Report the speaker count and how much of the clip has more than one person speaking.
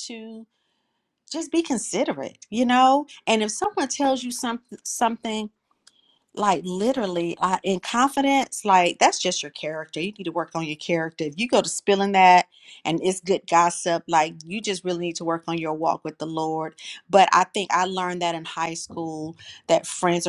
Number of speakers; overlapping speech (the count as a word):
one, no overlap